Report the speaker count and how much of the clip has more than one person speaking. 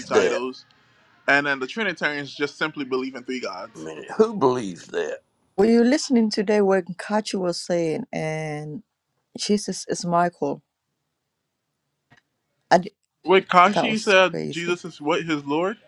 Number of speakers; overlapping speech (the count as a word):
three, about 9%